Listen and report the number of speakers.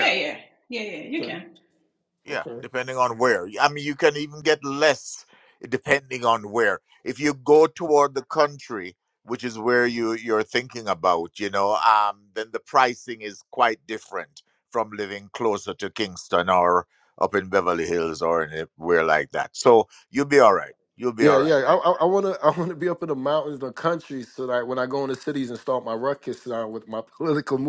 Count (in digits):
3